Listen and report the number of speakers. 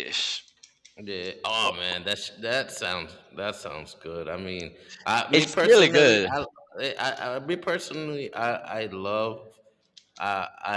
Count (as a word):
two